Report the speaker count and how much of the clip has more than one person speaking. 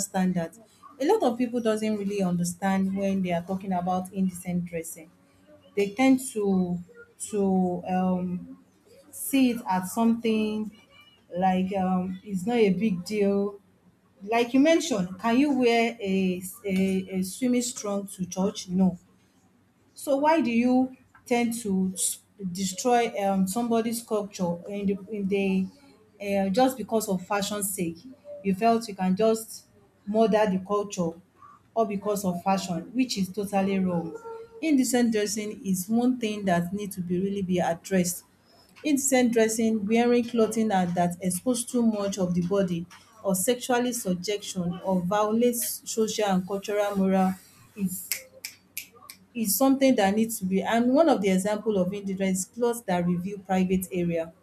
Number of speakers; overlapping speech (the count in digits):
1, no overlap